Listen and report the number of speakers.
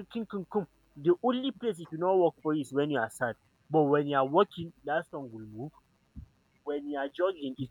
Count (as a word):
one